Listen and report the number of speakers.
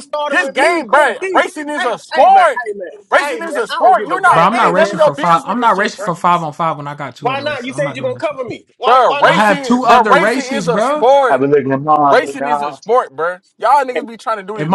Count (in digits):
4